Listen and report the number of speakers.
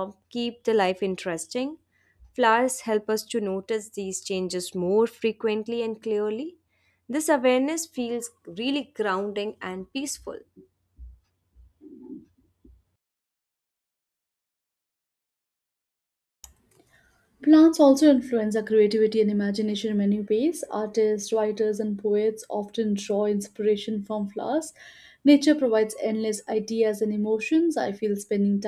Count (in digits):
2